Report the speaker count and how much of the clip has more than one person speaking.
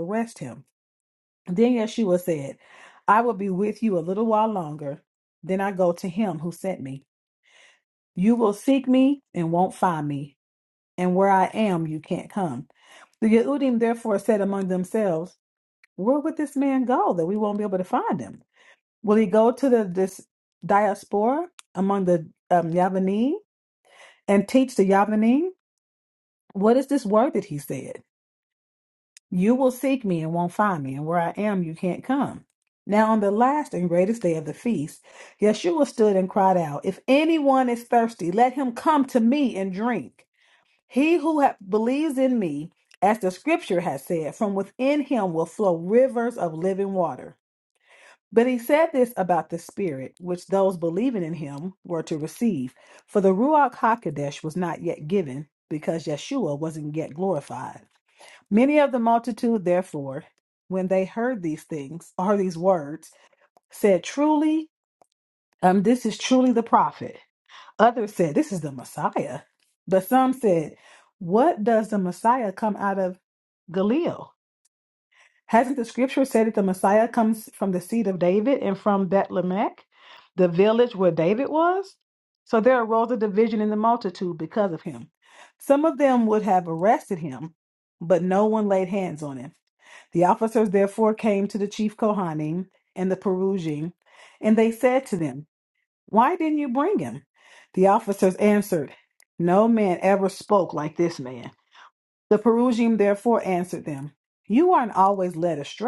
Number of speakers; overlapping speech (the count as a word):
one, no overlap